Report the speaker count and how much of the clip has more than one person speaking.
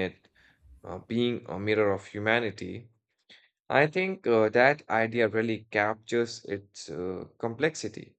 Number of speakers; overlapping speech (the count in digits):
1, no overlap